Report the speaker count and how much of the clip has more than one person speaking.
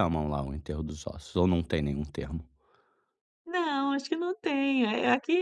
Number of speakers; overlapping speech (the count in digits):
2, no overlap